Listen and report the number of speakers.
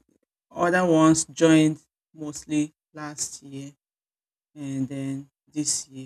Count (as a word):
one